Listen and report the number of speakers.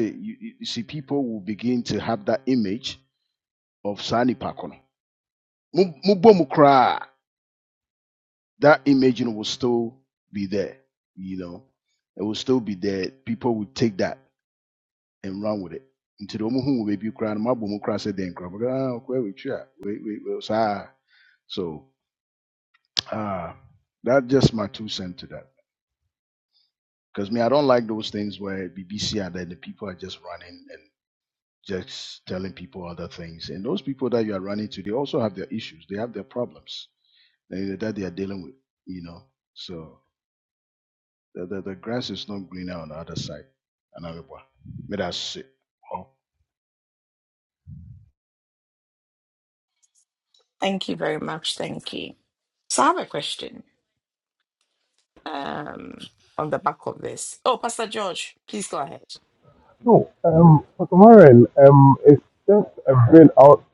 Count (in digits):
3